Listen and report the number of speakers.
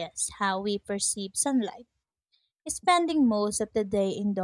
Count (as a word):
one